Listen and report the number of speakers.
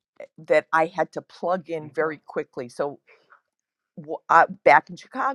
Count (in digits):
1